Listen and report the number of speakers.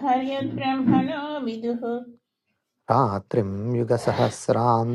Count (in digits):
2